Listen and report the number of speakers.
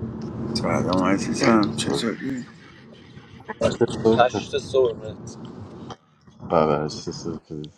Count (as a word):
three